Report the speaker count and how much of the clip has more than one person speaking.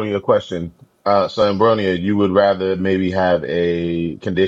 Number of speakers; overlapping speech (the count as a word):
one, no overlap